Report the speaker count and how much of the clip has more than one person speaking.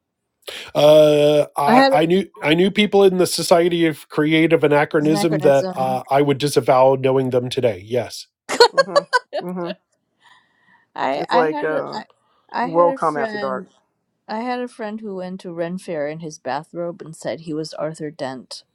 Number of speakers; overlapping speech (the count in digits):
3, about 17%